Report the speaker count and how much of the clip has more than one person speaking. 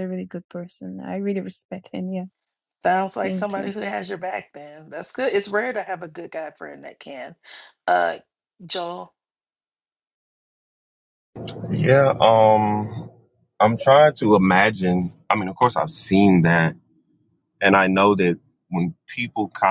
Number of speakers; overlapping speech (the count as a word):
three, about 3%